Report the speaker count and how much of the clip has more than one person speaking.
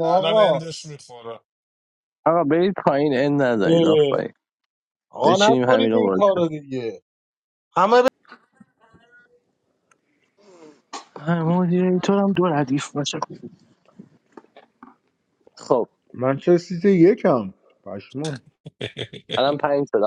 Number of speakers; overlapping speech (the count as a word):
four, about 11%